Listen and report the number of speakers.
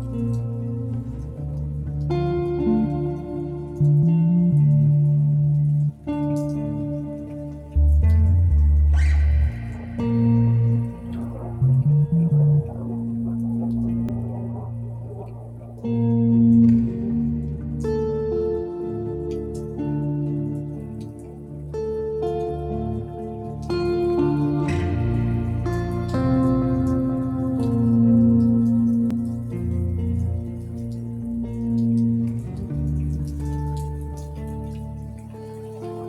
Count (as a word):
zero